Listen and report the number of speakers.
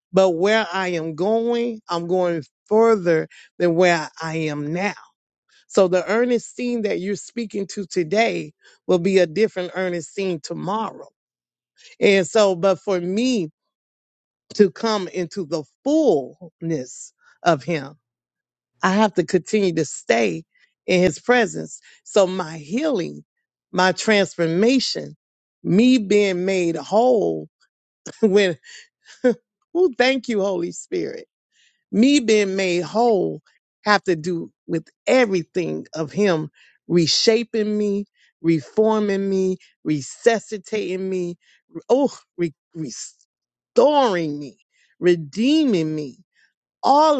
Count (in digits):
1